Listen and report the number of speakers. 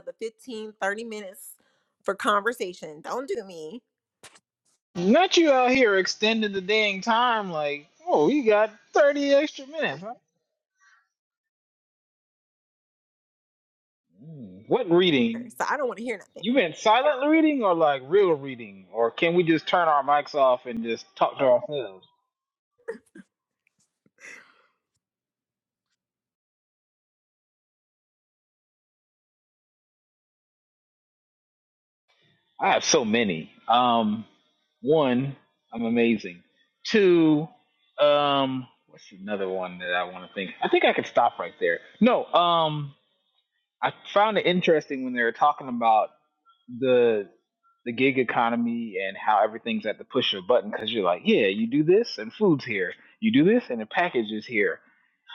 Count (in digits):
2